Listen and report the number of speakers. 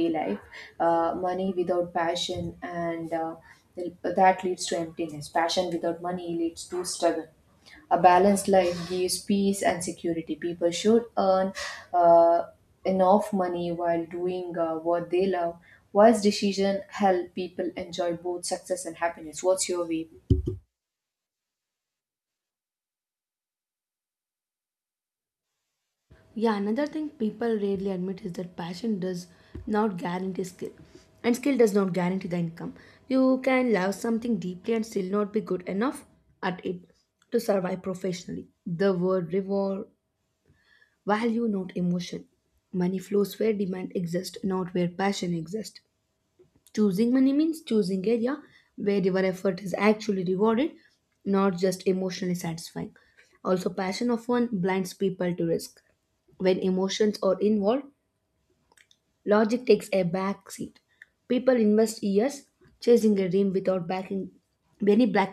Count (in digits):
2